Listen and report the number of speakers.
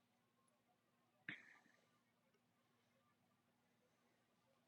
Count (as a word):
zero